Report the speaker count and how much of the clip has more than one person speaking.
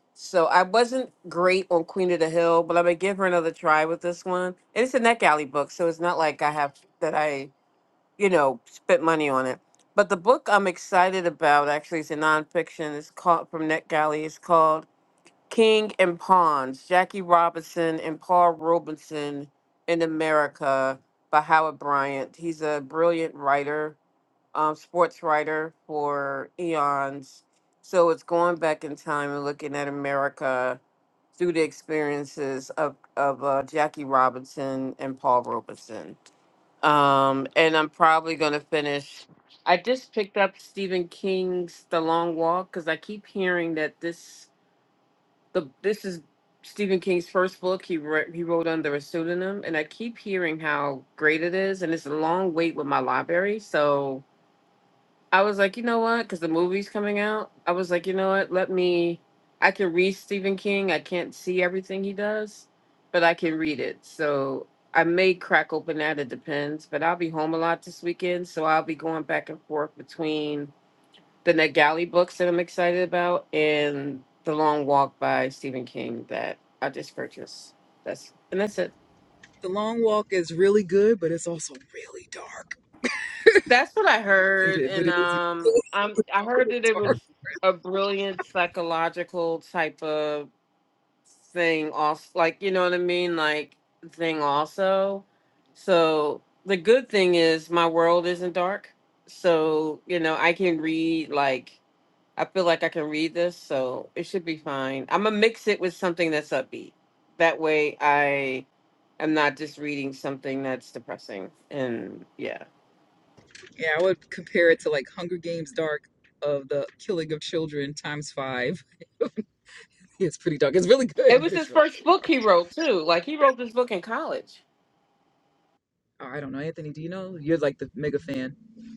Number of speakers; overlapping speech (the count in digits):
2, about 2%